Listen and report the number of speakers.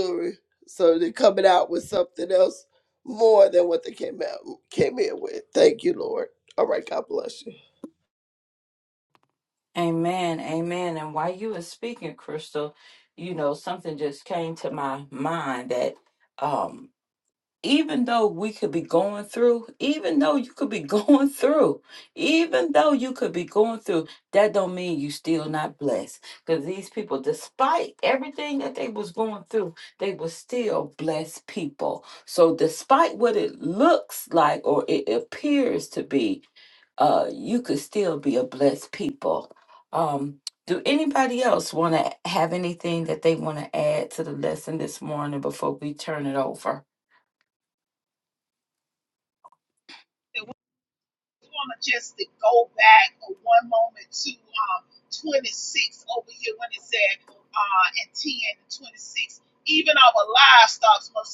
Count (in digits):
3